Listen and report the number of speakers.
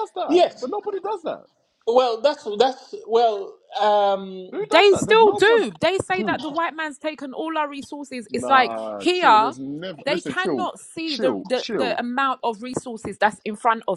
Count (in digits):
3